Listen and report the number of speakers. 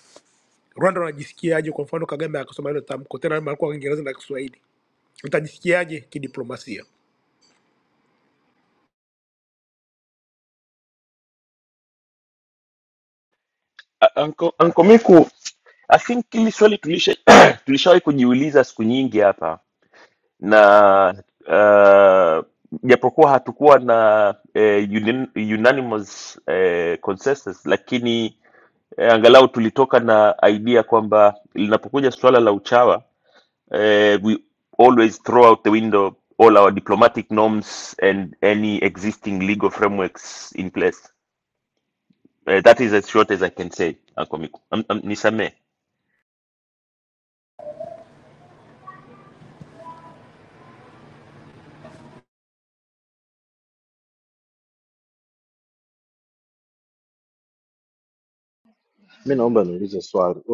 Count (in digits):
3